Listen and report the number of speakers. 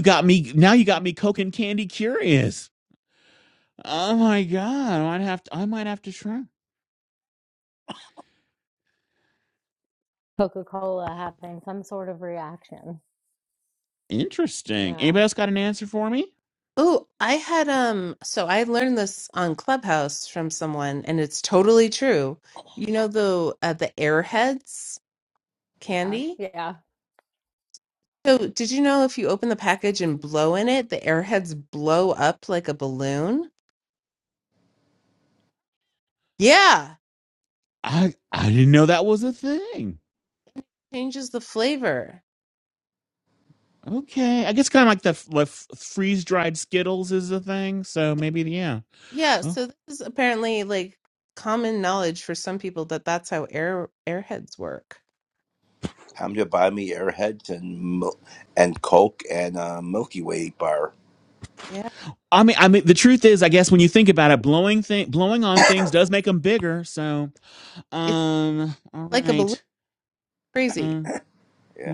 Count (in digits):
4